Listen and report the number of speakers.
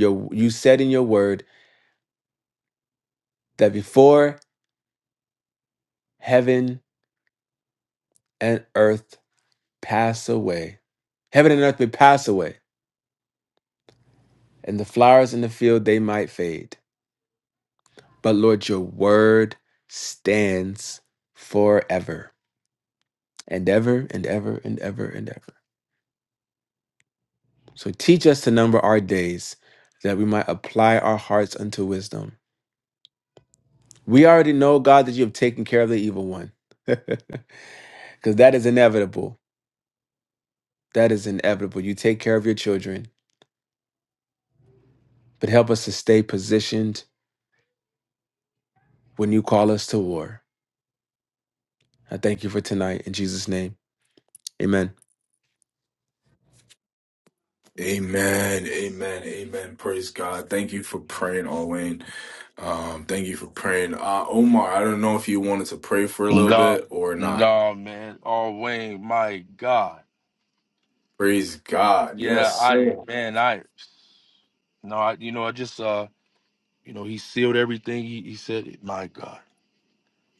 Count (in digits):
3